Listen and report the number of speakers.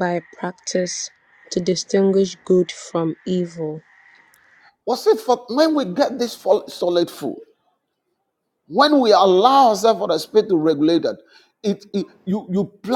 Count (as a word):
two